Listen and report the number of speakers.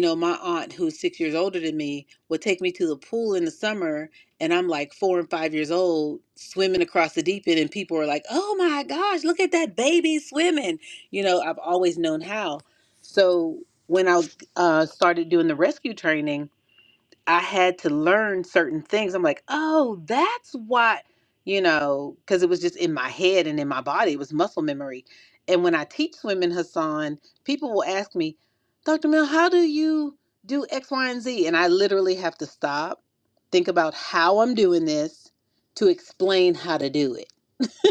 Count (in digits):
1